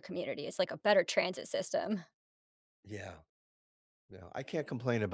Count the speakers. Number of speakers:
2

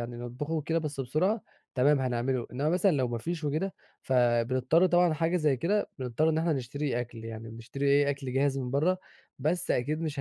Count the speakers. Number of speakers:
1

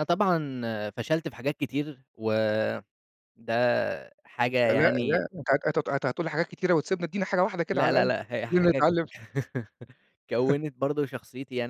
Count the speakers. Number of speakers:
2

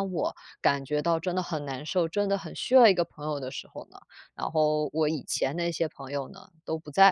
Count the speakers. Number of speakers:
1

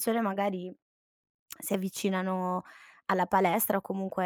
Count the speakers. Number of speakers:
1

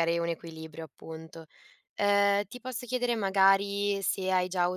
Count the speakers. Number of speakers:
1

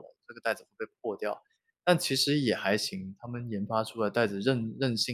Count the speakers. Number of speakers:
1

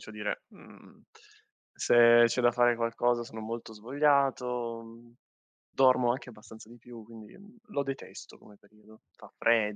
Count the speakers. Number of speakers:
1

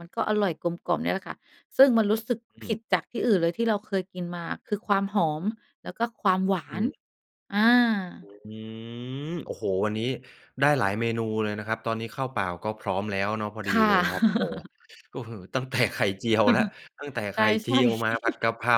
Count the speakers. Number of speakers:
2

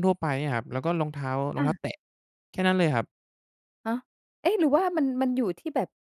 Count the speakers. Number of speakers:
2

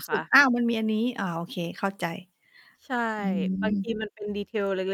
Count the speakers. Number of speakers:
2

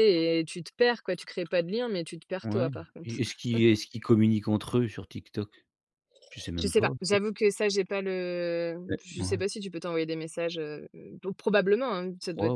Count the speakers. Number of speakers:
2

